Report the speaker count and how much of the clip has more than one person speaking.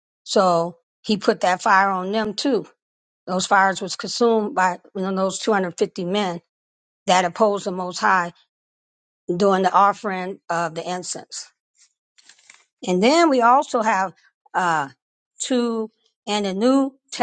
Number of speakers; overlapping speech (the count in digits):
1, no overlap